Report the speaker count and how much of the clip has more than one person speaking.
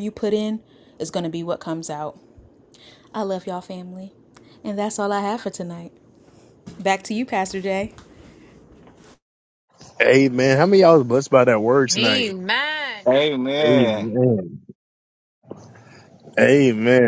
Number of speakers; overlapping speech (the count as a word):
four, about 5%